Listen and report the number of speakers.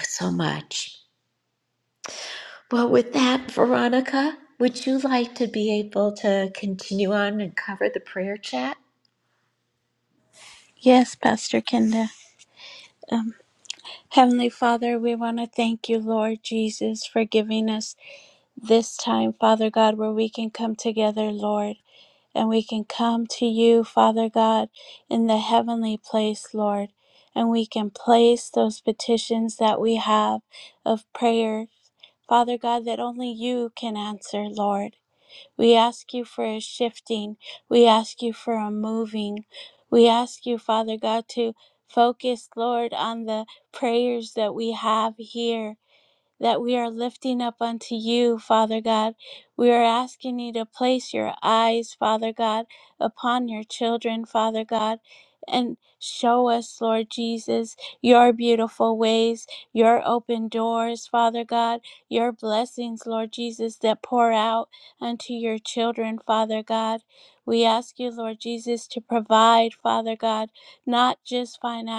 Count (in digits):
2